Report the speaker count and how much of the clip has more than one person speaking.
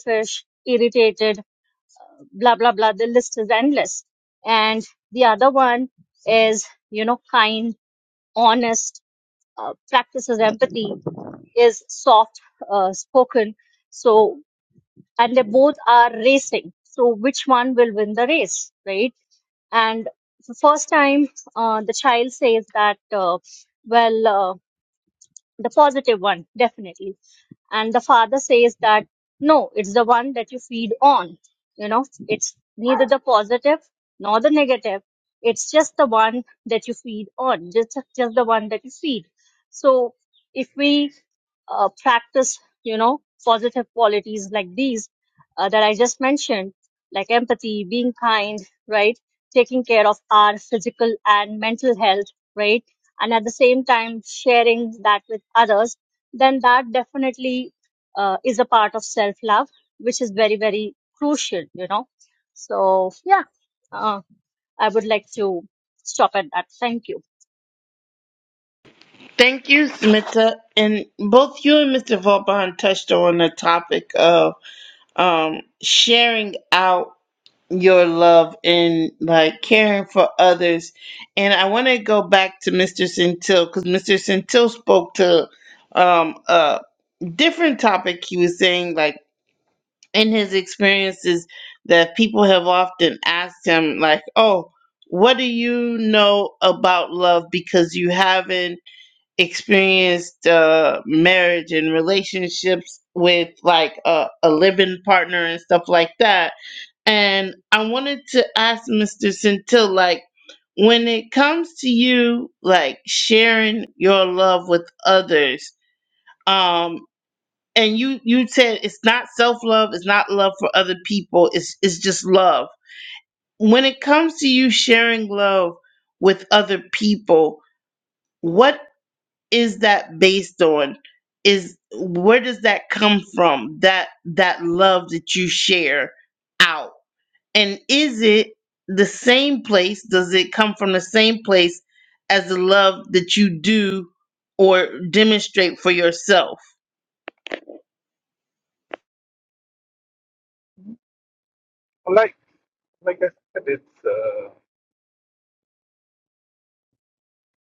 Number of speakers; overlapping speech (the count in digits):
3, no overlap